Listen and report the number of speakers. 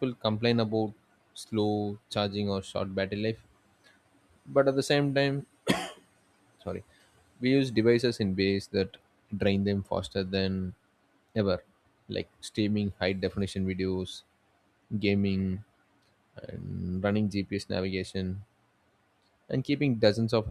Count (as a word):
one